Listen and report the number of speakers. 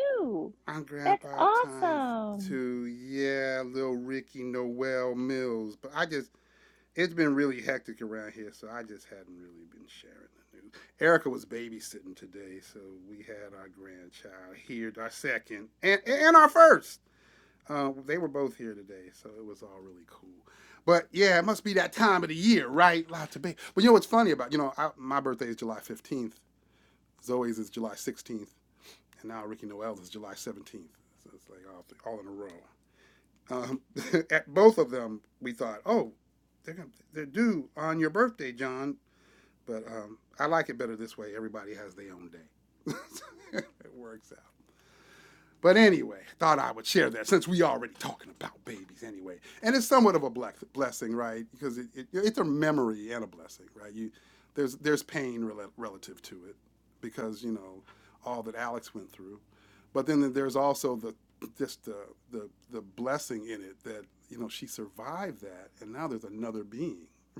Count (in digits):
2